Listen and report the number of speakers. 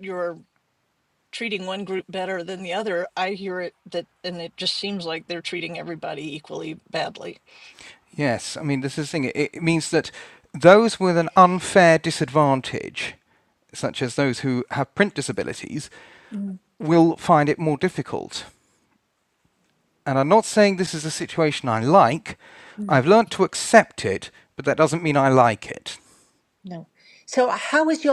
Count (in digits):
3